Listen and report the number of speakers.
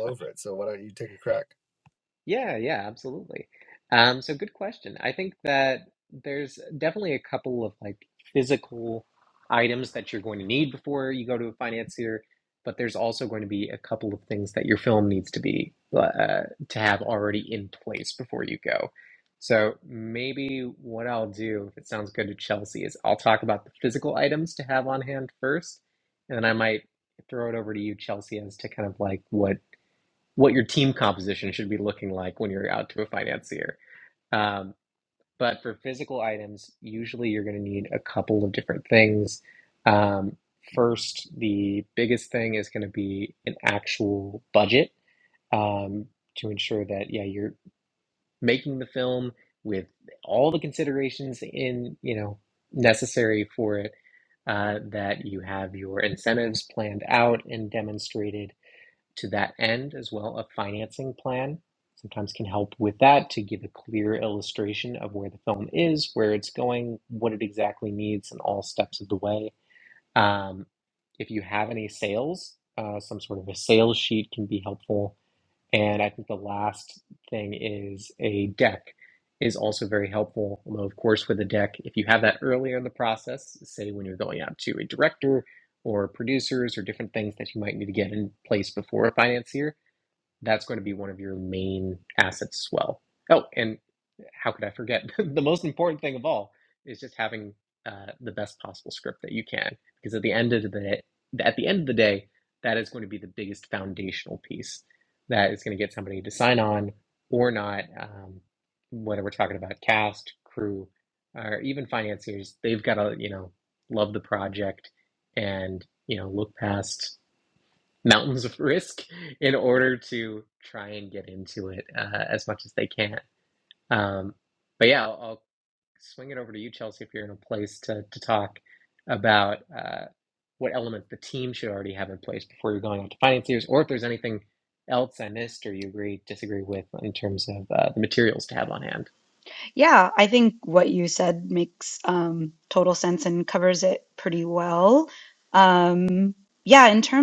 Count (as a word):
three